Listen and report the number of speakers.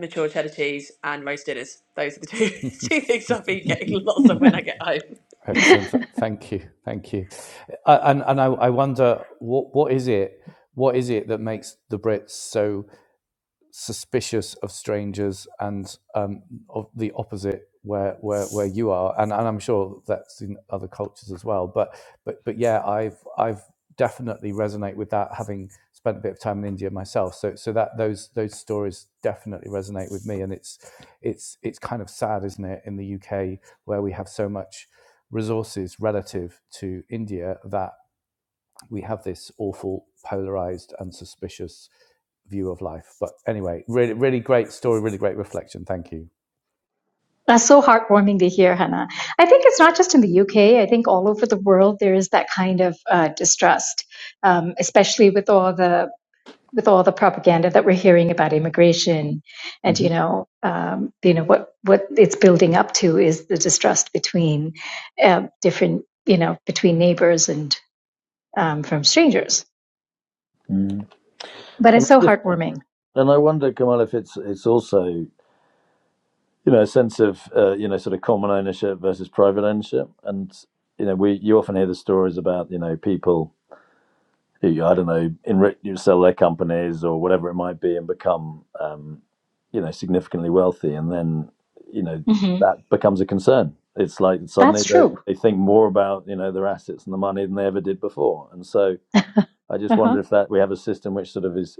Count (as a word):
four